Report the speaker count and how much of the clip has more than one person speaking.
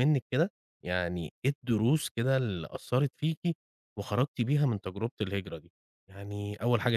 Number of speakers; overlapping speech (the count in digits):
1, no overlap